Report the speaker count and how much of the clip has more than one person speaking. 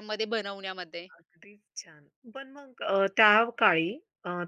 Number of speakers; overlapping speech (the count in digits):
2, no overlap